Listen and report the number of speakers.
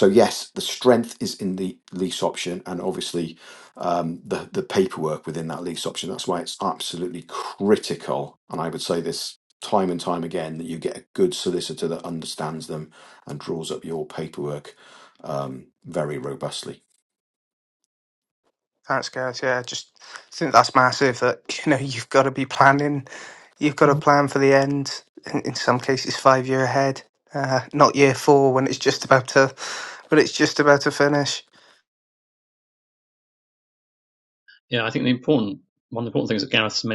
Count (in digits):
3